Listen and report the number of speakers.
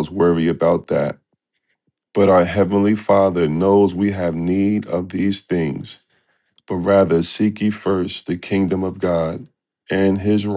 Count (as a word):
one